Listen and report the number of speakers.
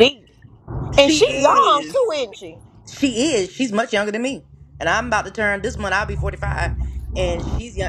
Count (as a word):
two